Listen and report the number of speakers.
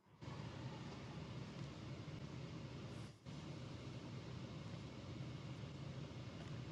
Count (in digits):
0